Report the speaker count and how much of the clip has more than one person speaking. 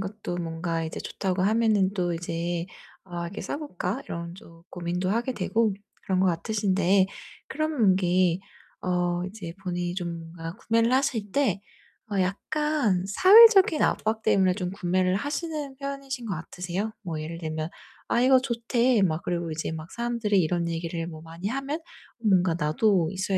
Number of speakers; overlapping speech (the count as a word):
one, no overlap